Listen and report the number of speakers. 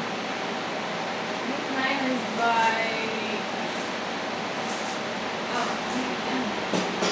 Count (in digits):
1